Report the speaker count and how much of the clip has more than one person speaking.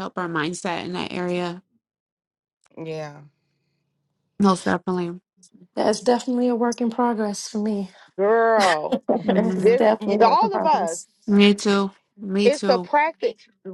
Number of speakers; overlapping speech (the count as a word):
three, about 13%